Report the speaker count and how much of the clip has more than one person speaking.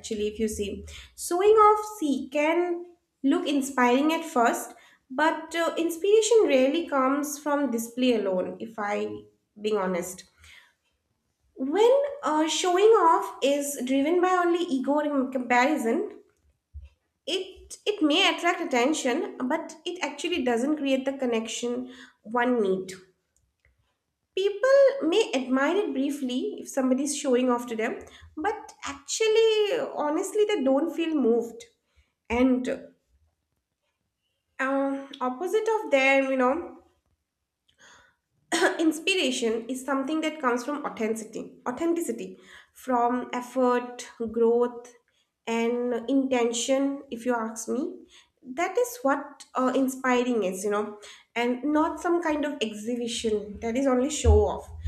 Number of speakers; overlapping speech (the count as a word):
one, no overlap